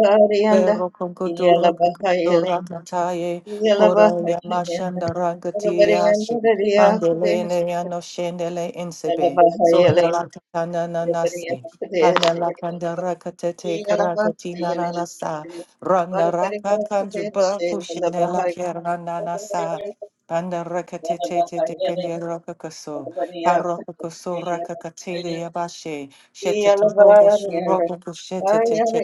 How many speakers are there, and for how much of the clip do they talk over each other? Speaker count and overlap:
two, about 39%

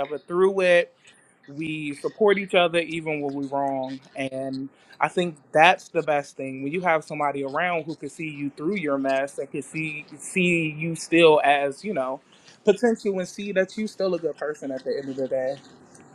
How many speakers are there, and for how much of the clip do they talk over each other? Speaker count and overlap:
one, no overlap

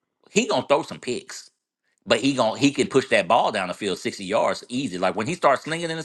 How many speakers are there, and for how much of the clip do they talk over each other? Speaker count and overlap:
one, no overlap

